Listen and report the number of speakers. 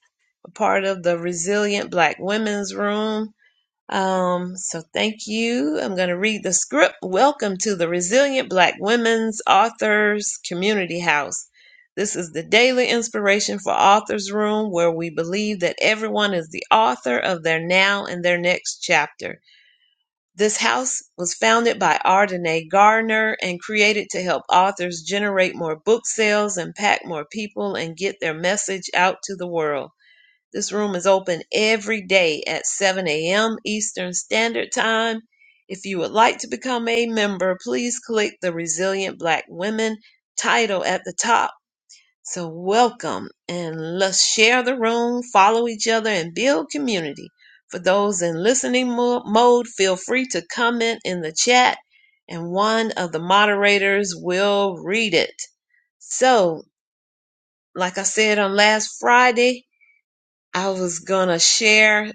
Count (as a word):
one